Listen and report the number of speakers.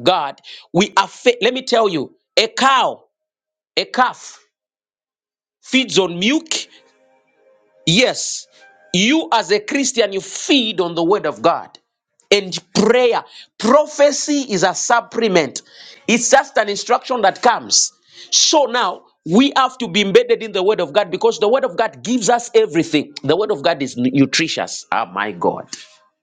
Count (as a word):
one